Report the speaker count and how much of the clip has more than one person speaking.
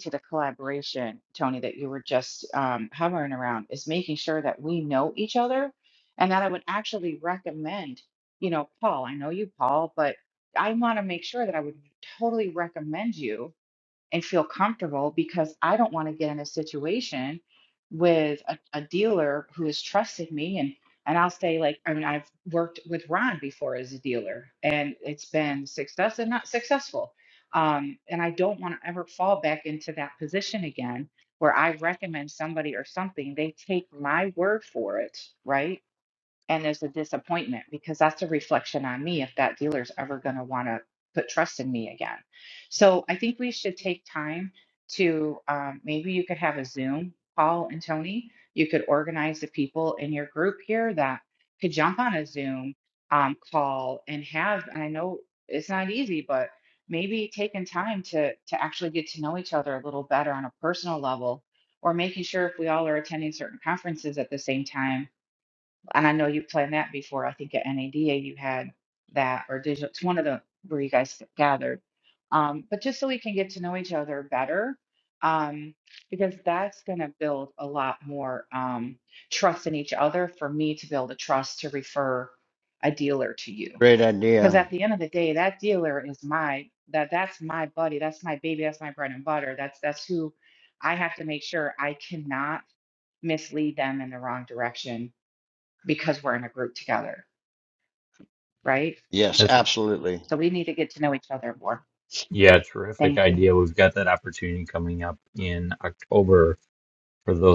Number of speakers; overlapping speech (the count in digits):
3, about 1%